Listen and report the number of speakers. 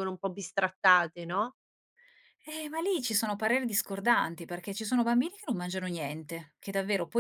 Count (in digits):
2